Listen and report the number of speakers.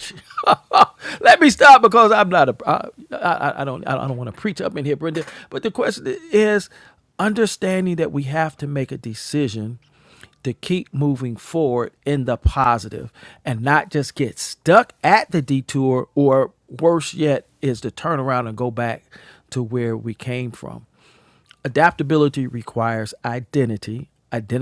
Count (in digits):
1